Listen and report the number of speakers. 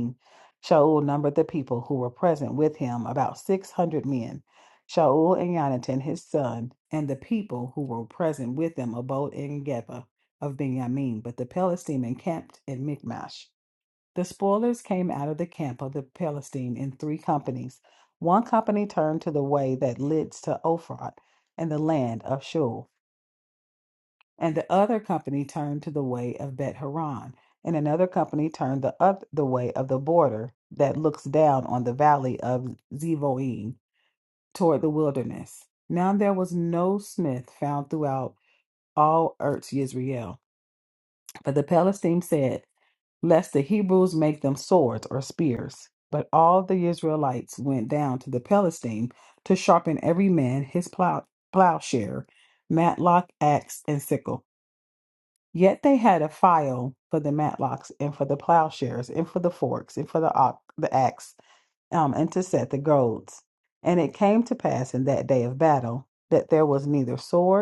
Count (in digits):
1